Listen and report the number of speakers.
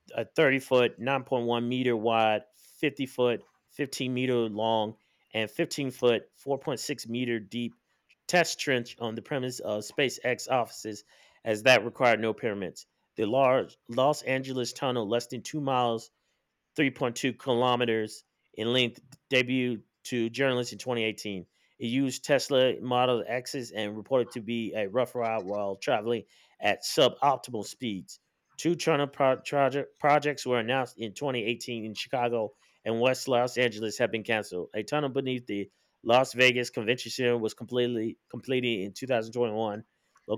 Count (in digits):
1